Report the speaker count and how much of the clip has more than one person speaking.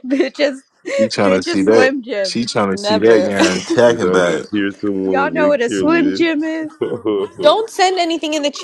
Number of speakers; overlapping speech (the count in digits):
4, about 41%